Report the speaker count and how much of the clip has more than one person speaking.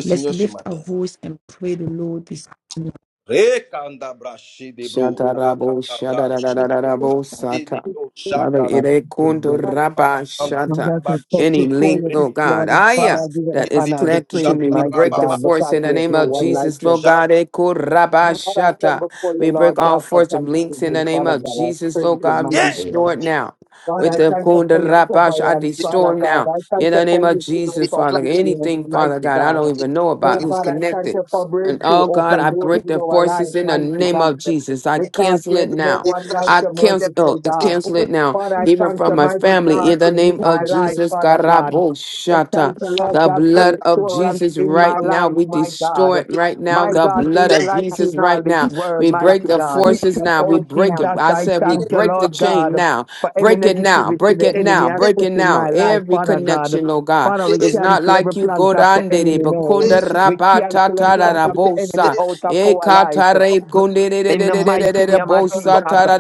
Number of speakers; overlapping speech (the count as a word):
four, about 77%